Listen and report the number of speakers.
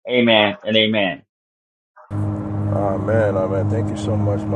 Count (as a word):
two